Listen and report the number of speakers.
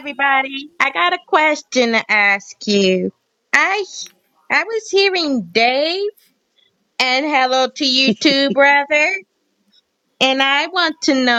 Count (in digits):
1